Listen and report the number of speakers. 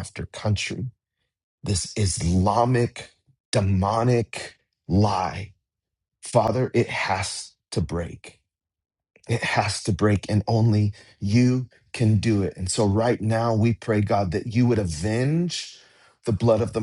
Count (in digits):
1